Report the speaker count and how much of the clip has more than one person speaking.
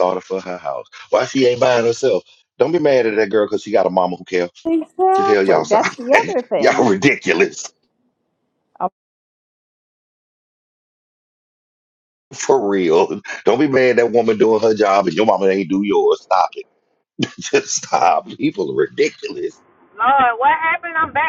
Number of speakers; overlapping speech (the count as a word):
three, about 8%